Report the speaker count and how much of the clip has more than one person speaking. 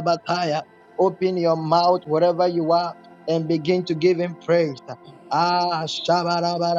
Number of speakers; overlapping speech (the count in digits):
1, no overlap